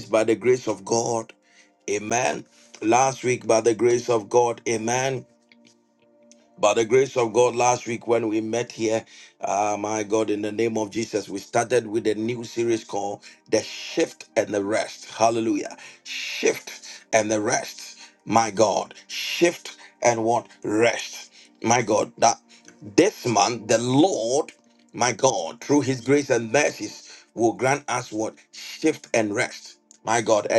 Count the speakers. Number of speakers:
1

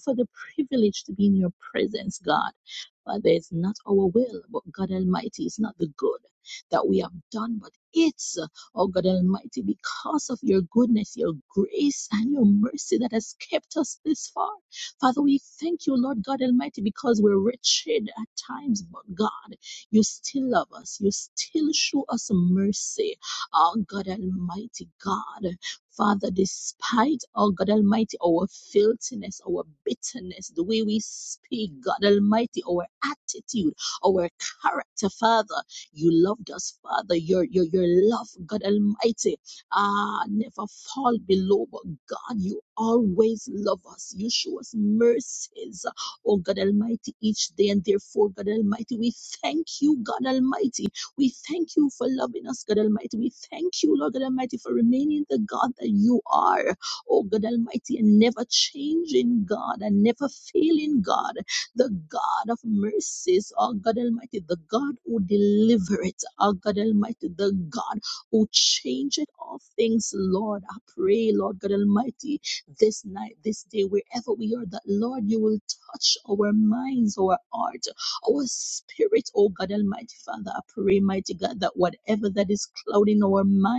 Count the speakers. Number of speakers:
1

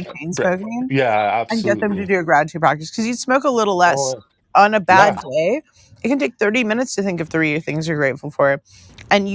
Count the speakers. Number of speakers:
2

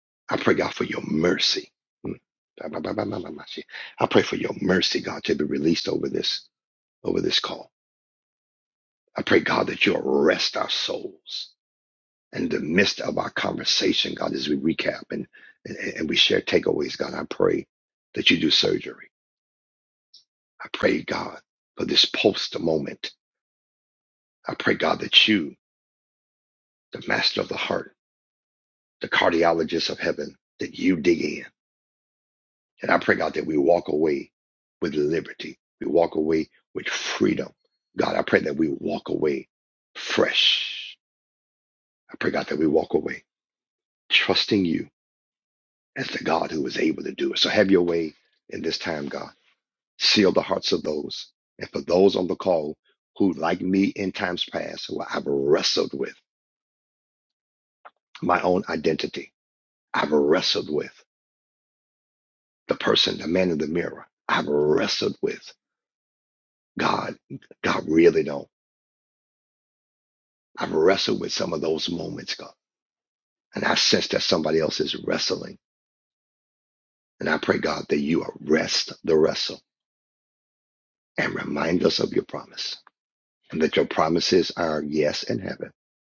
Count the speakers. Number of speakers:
1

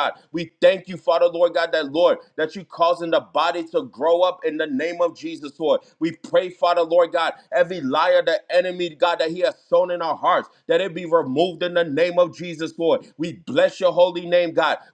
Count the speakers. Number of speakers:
1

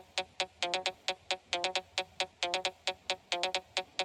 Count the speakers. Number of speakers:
0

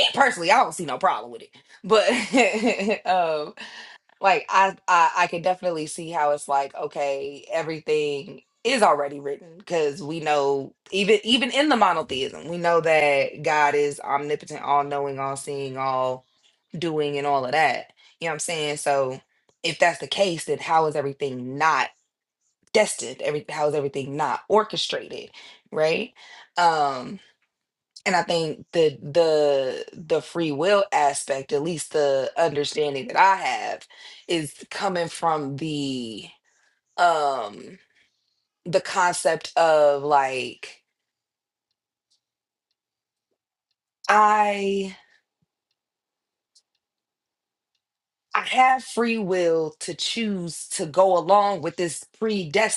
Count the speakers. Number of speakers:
1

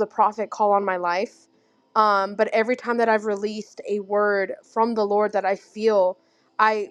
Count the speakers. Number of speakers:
1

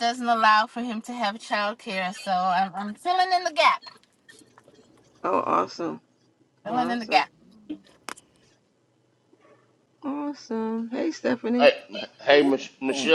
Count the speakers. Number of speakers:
3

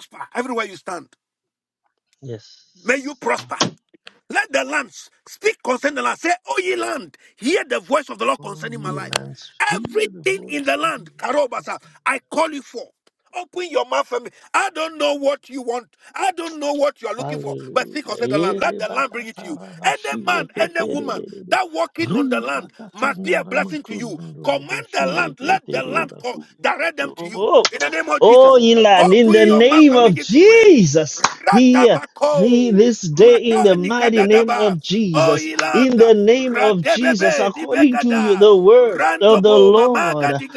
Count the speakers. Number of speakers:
2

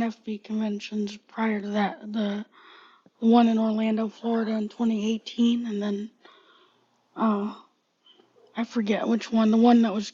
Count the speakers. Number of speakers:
1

